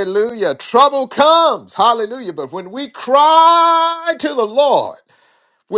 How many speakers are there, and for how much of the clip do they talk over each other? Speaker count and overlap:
1, no overlap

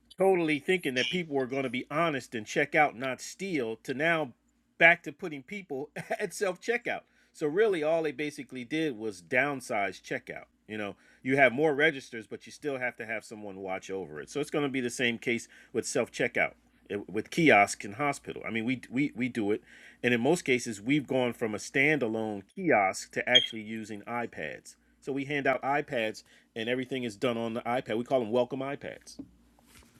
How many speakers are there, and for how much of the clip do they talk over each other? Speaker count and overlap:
1, no overlap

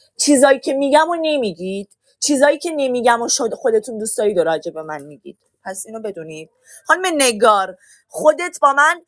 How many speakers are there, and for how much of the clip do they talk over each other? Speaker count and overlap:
1, no overlap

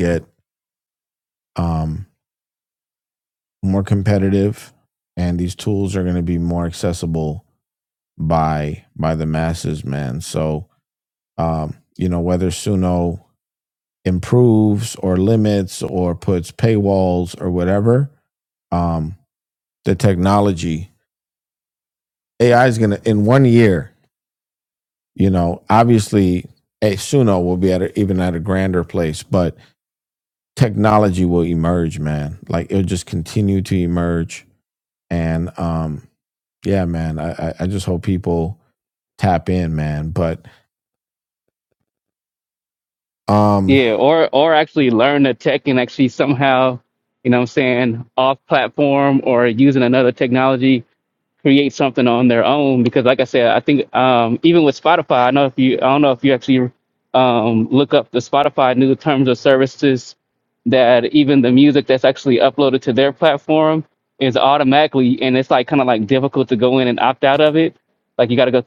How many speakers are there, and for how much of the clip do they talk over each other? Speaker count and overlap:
2, under 1%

